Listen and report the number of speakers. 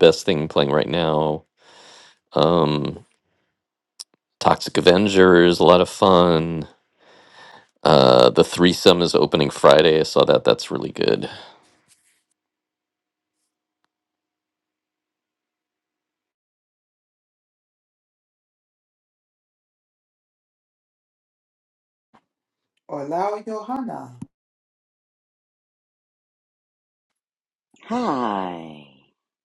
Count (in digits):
3